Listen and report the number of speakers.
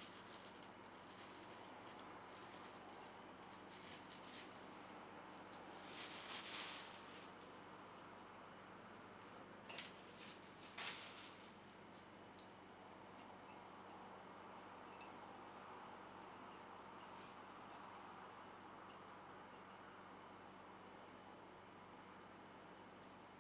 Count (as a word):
zero